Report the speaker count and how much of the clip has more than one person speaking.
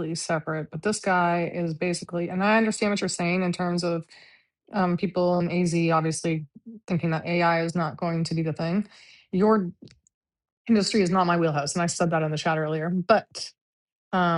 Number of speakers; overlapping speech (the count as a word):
one, no overlap